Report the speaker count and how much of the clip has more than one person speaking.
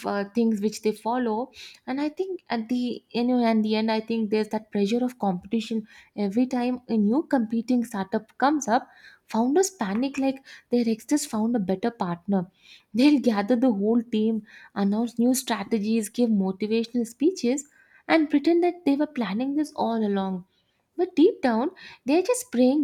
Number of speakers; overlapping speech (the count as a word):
one, no overlap